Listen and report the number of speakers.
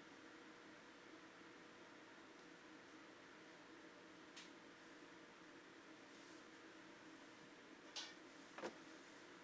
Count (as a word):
zero